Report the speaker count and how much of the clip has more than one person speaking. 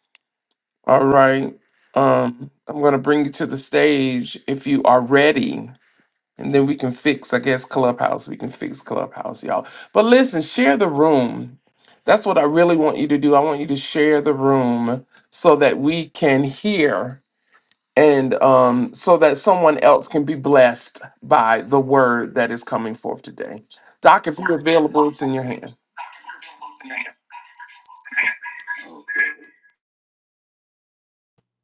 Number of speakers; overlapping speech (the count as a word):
one, no overlap